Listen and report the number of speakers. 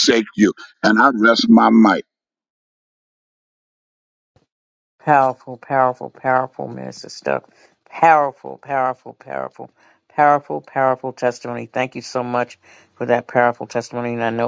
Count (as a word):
two